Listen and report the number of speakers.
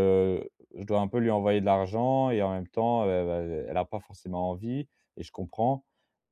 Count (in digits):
1